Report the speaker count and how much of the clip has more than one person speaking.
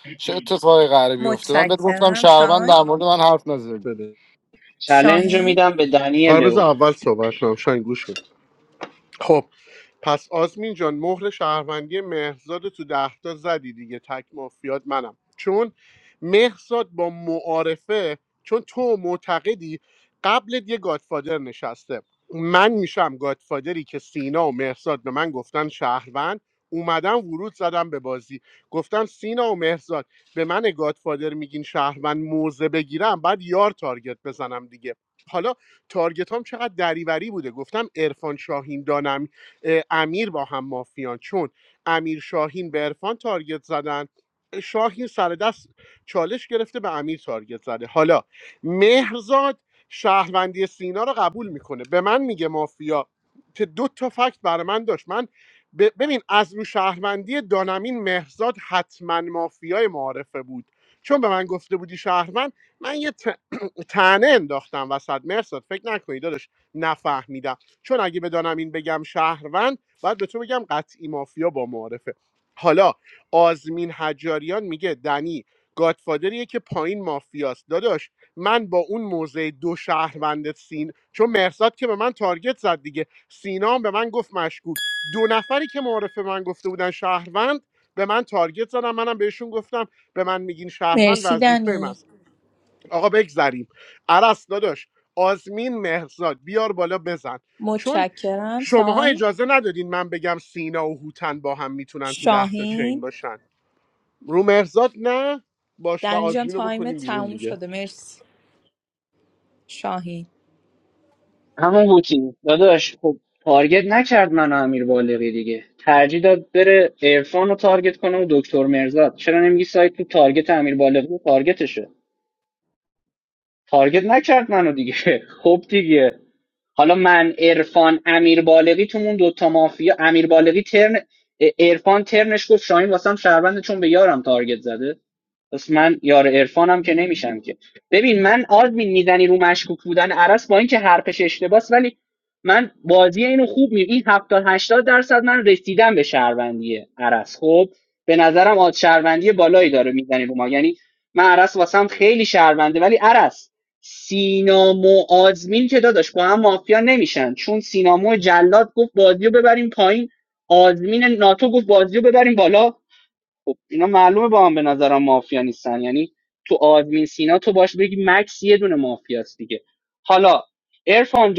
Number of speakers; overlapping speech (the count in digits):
4, about 4%